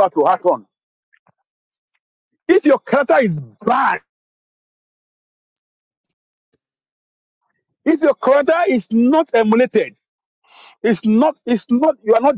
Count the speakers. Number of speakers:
one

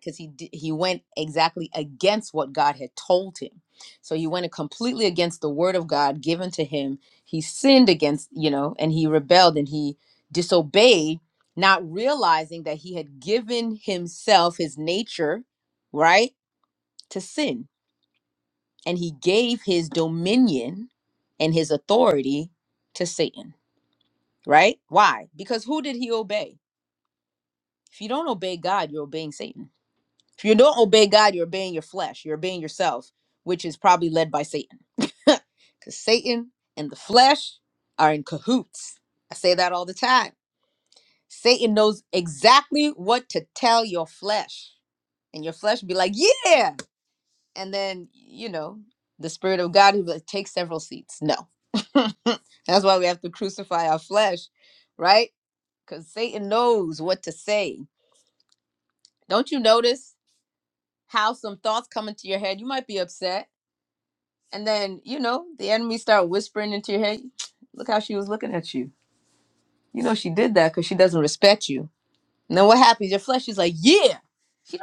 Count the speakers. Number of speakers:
one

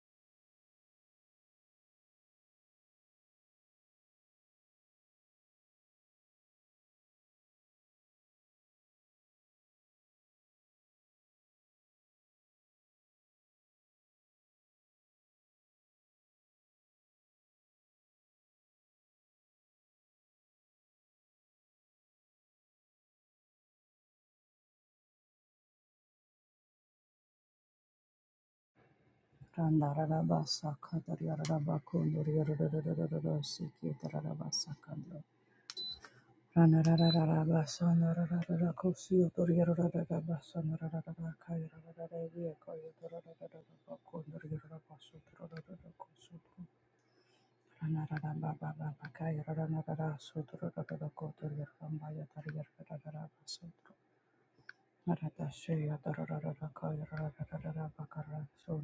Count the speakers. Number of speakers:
one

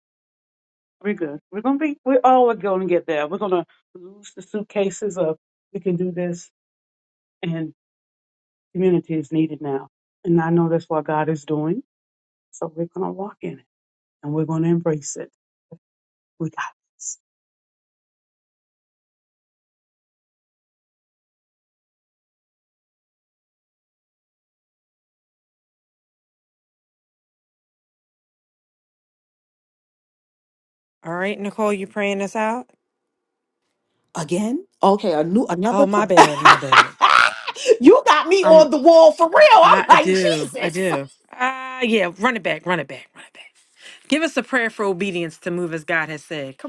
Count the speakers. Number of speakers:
three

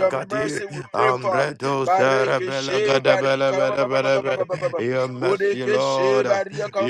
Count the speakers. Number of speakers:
two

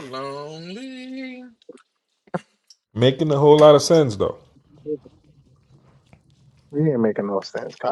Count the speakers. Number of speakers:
three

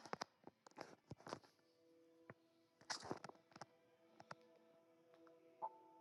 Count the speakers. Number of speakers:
zero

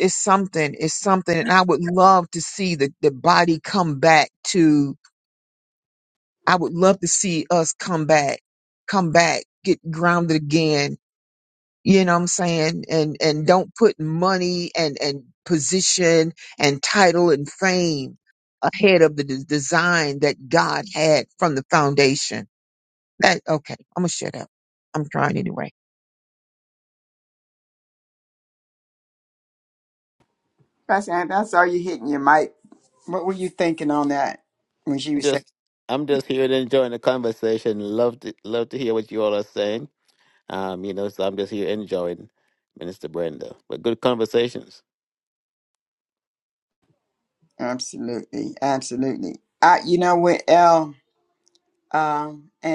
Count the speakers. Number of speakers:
three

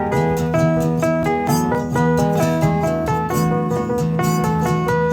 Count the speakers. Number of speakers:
zero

